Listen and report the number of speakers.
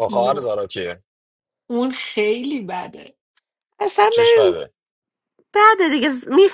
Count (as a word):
three